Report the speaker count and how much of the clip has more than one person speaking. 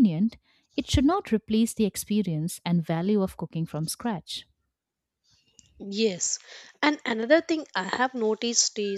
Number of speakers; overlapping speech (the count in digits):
2, no overlap